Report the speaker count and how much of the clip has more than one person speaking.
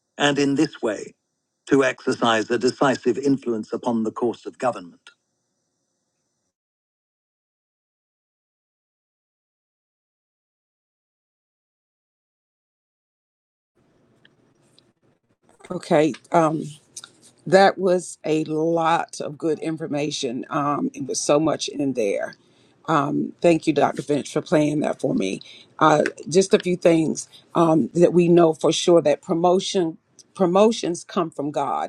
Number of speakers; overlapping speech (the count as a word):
two, no overlap